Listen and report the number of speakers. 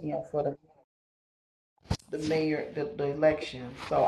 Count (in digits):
1